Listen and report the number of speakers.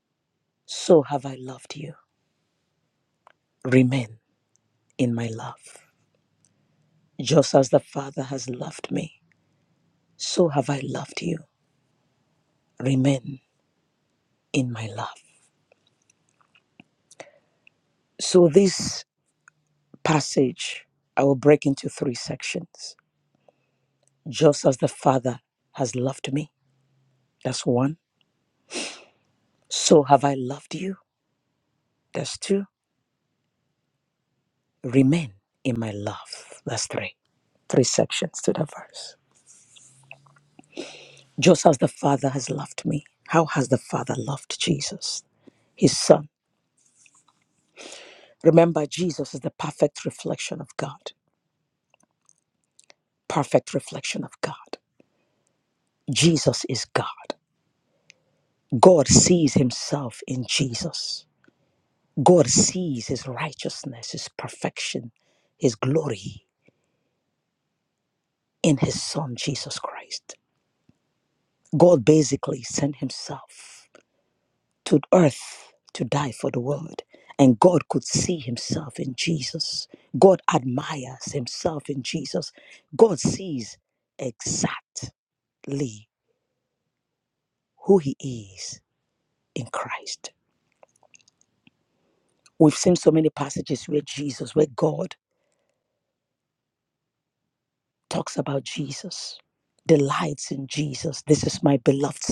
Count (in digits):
1